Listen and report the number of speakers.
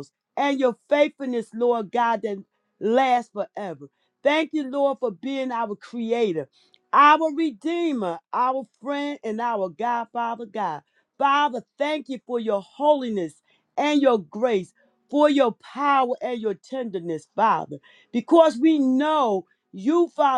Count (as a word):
one